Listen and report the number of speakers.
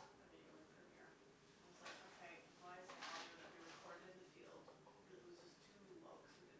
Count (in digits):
1